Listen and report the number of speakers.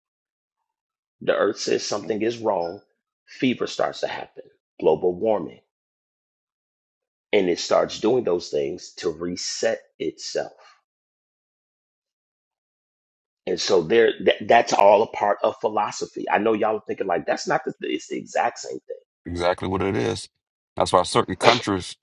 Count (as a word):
two